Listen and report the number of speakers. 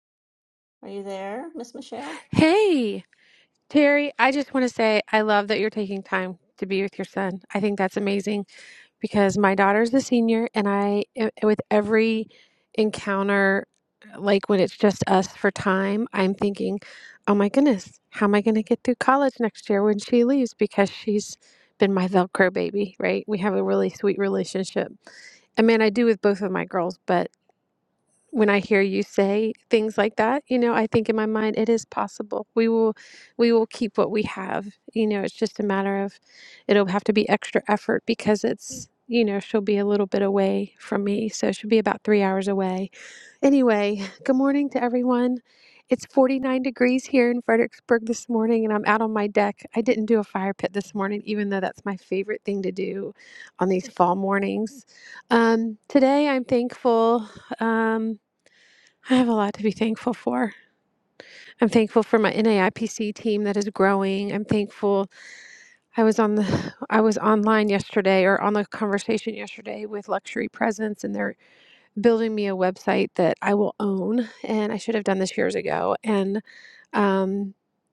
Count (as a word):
two